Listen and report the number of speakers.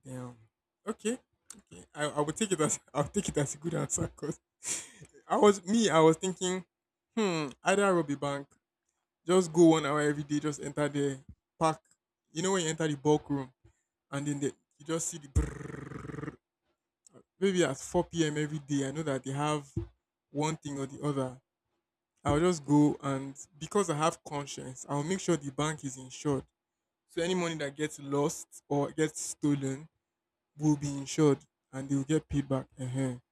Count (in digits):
1